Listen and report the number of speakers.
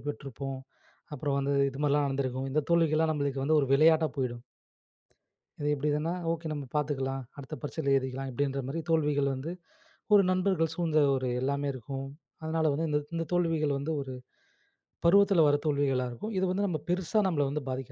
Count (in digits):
1